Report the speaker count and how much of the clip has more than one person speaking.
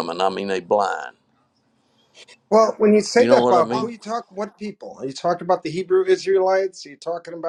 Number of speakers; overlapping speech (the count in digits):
2, about 9%